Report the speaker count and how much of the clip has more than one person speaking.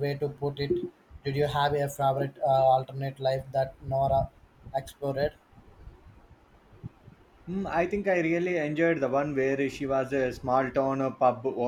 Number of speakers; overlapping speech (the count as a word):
two, no overlap